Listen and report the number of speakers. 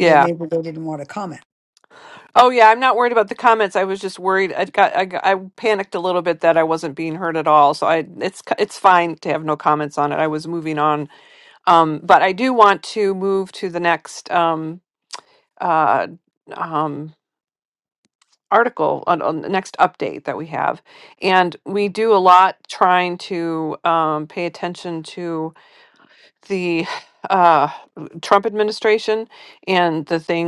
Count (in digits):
2